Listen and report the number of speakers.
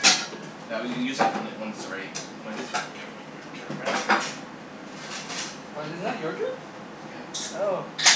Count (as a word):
two